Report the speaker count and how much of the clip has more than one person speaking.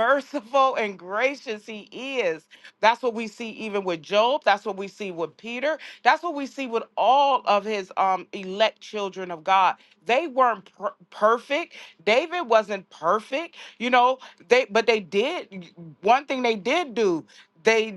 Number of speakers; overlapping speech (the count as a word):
one, no overlap